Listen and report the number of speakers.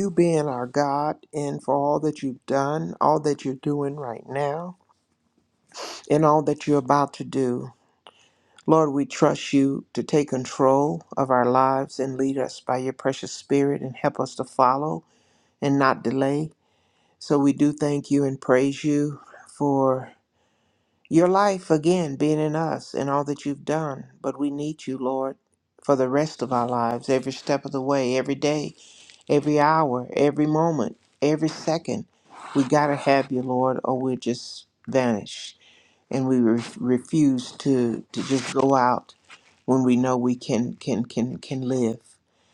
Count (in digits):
1